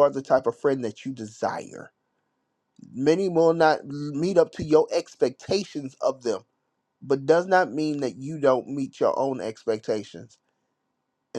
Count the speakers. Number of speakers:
1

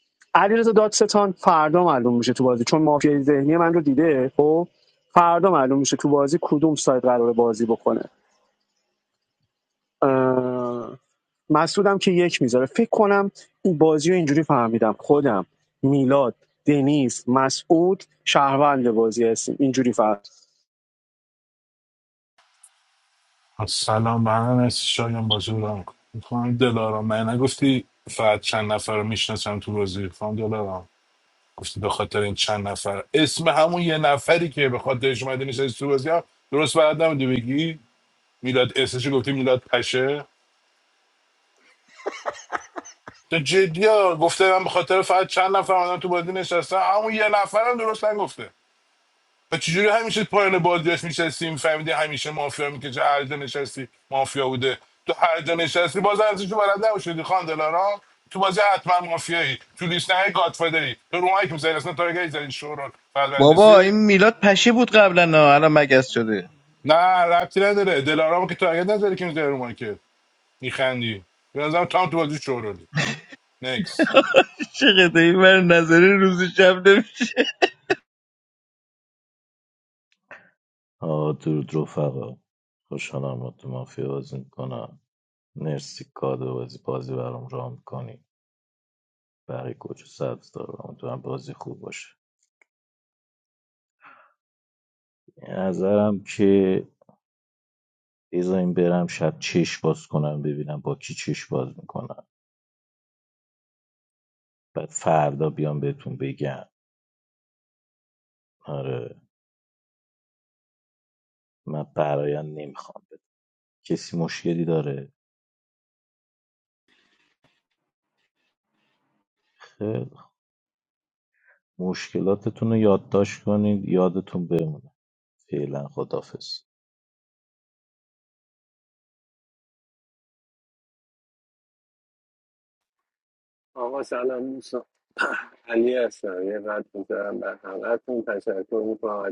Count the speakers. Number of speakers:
5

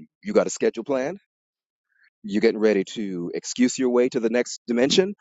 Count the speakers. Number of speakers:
1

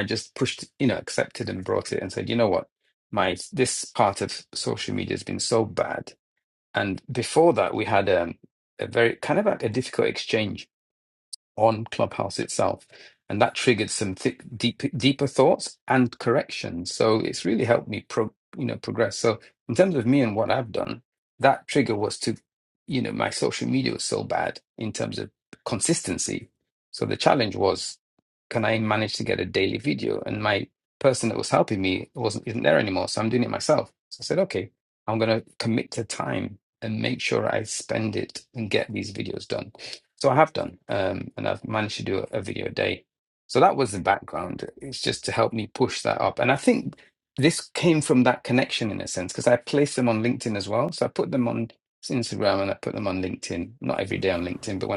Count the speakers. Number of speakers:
1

